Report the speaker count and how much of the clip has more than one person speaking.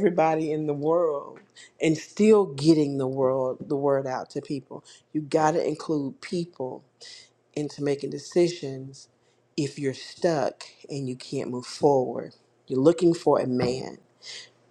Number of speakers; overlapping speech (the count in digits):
1, no overlap